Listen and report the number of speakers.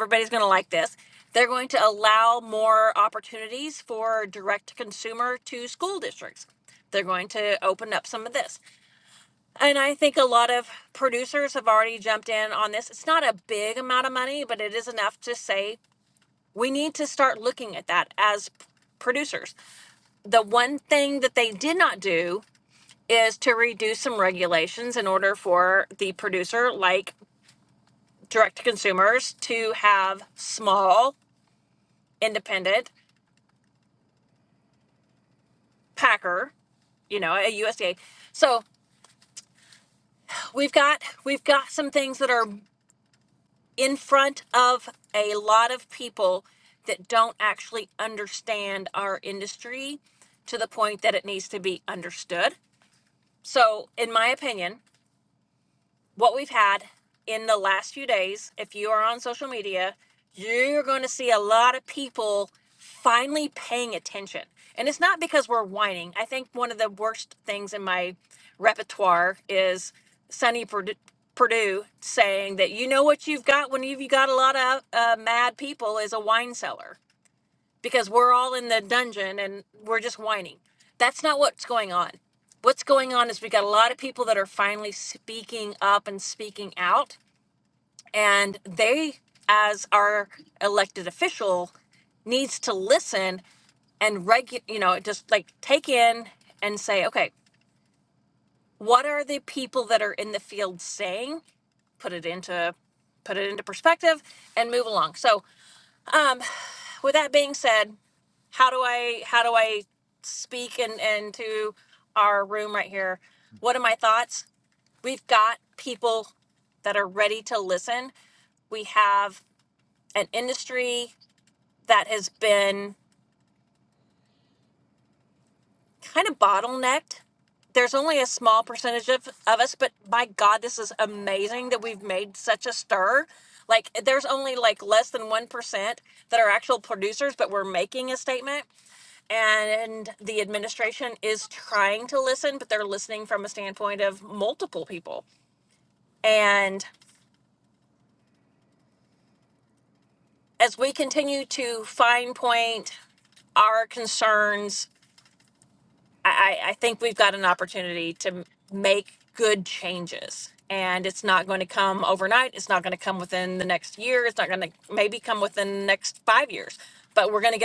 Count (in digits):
1